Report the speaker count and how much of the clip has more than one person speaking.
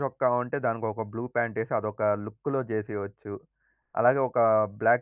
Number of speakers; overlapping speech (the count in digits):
1, no overlap